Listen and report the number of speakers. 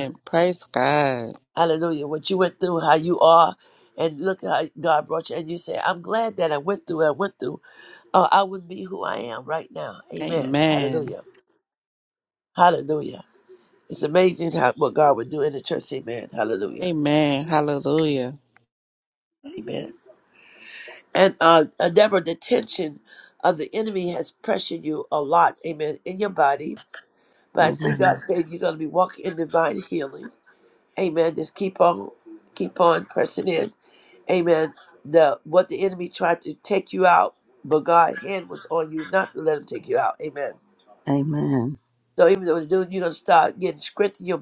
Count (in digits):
3